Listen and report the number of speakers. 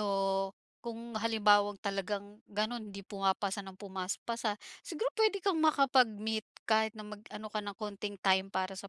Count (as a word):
one